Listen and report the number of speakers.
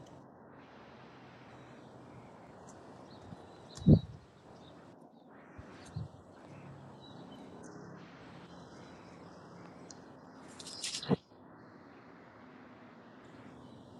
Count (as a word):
zero